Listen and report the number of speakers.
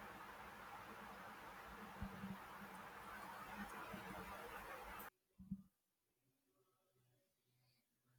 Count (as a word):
zero